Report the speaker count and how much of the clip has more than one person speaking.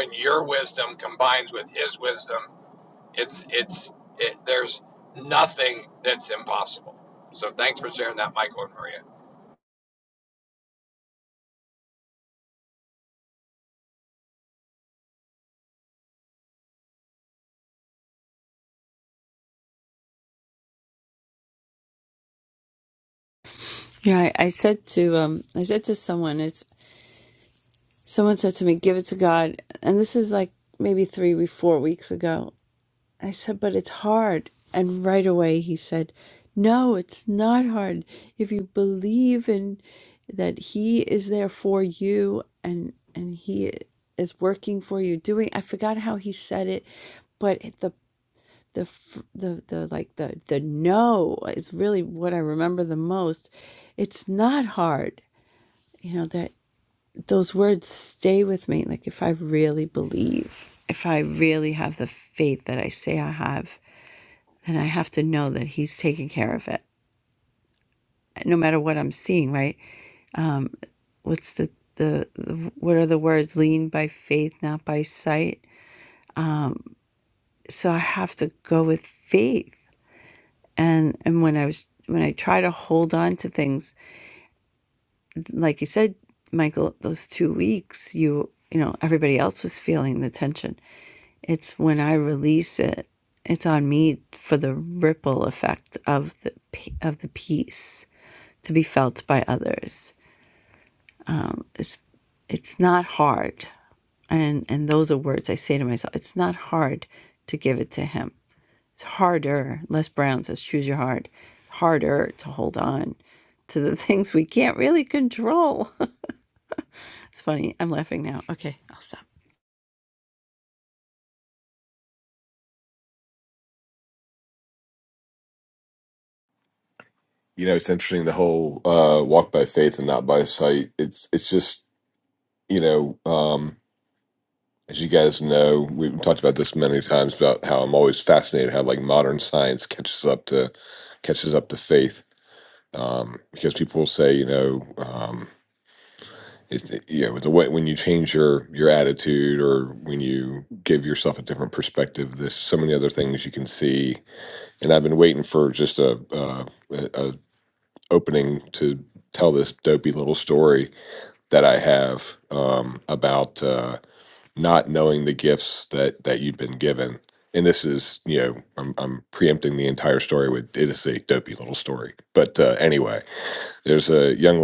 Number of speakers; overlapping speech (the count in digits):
3, no overlap